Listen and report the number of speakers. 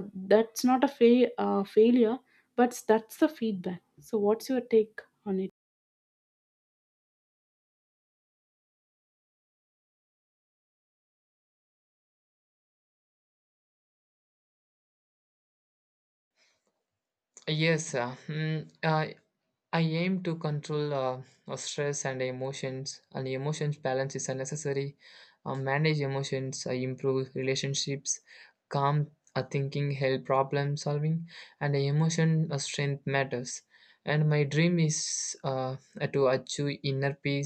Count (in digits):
2